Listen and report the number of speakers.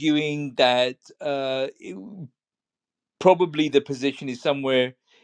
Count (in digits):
1